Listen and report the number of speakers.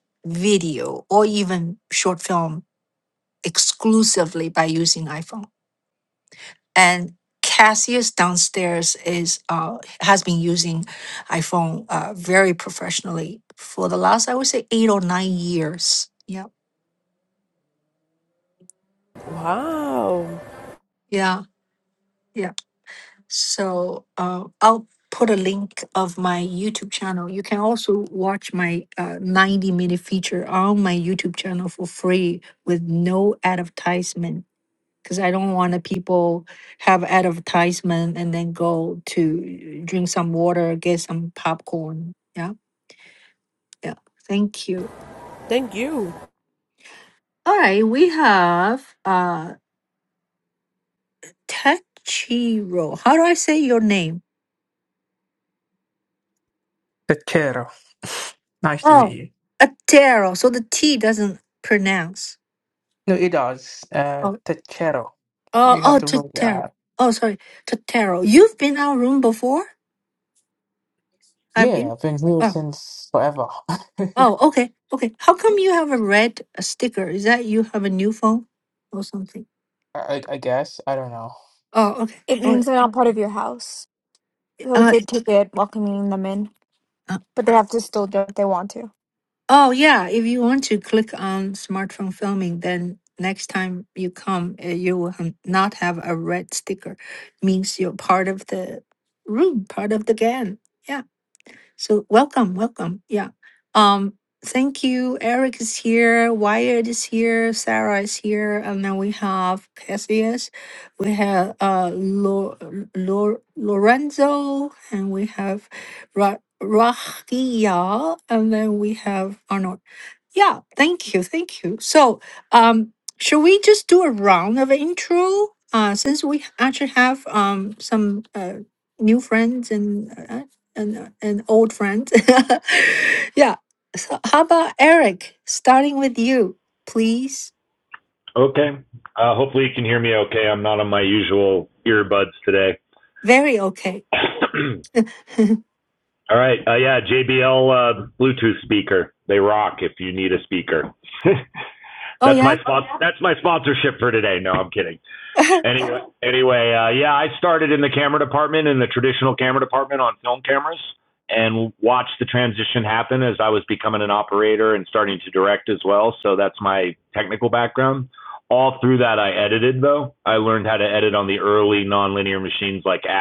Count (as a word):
five